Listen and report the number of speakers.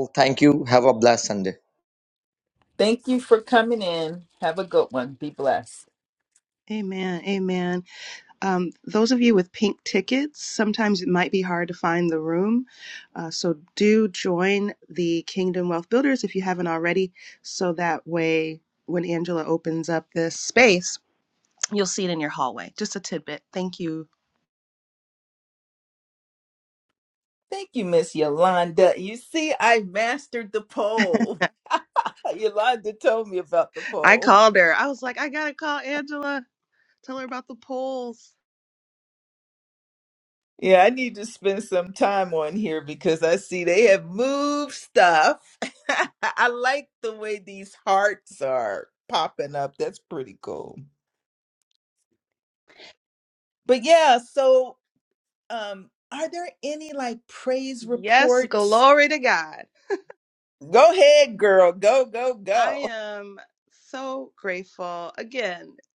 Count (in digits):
3